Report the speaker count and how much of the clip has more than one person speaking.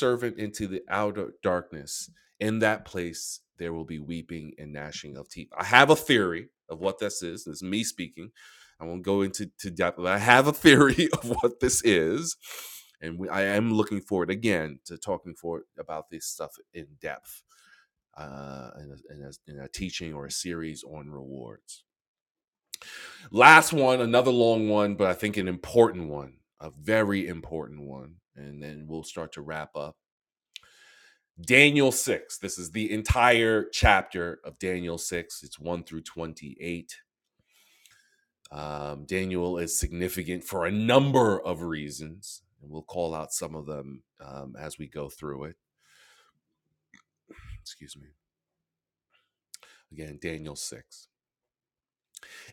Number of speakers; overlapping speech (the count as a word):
one, no overlap